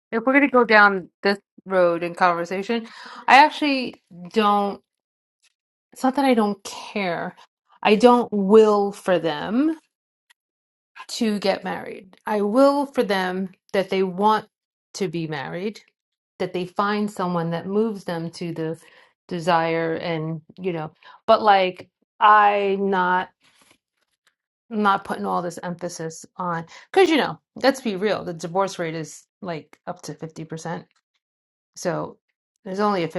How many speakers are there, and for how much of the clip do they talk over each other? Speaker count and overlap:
1, no overlap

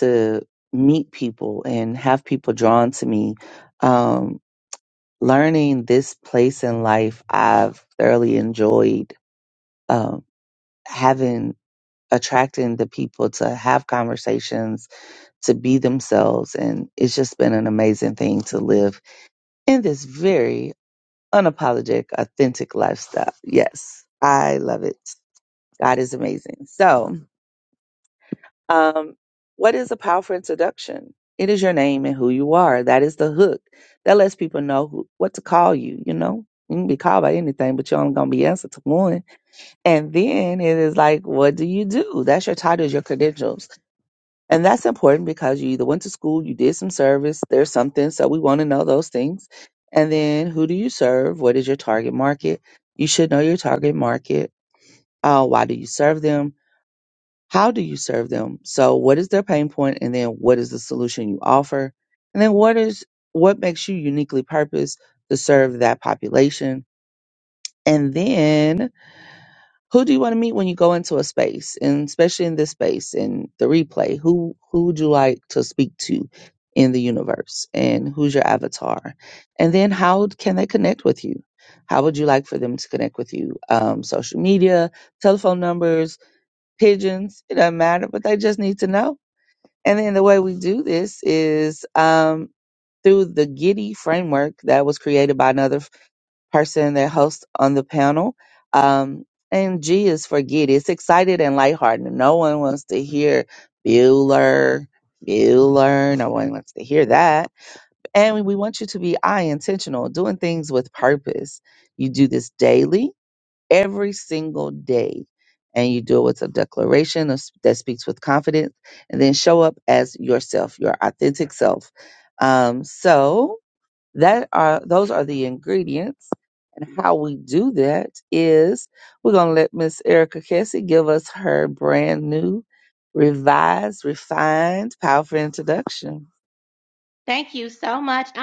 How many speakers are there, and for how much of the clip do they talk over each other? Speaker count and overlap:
2, no overlap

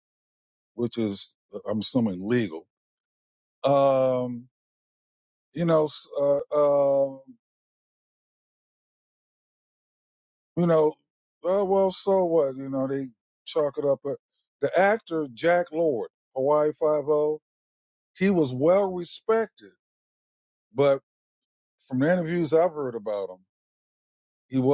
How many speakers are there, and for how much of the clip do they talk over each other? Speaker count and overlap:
1, no overlap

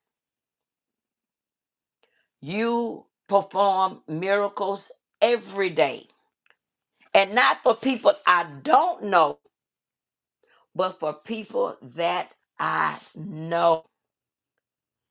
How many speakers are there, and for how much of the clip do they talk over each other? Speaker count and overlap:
1, no overlap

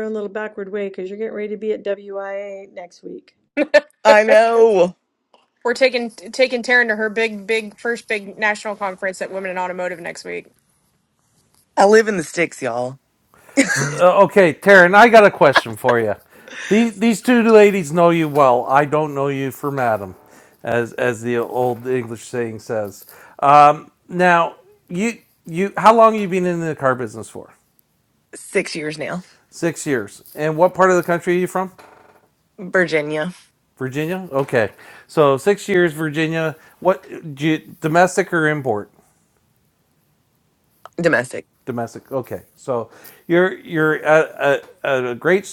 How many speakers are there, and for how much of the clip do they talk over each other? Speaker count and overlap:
4, no overlap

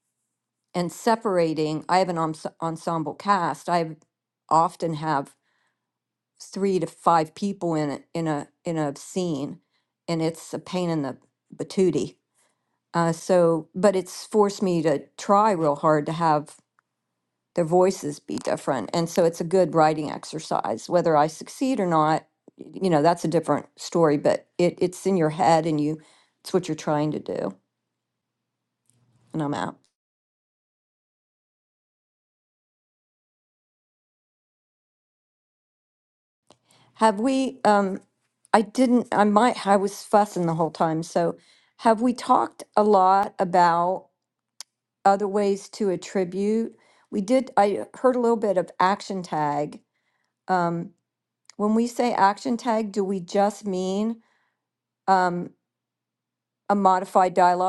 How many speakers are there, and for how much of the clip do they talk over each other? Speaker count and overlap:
1, no overlap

